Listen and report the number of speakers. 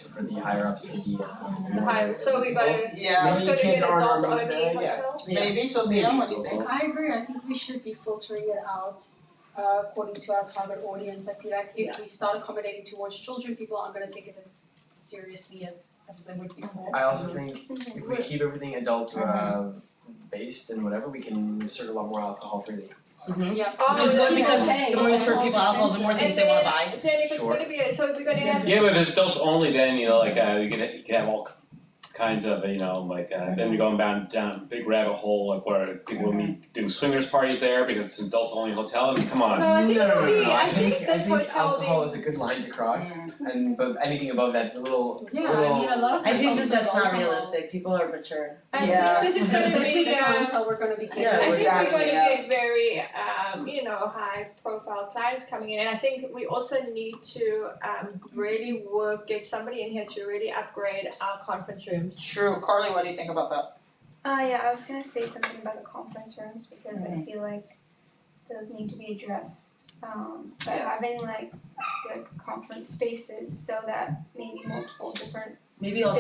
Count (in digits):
7